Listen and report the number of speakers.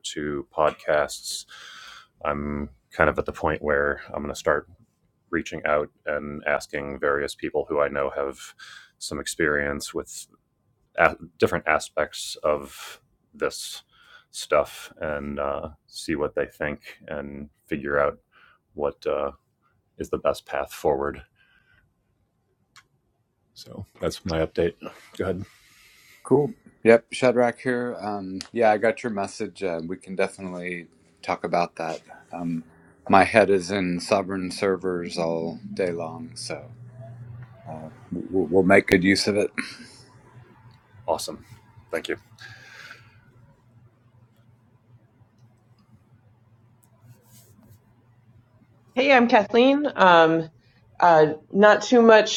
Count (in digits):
3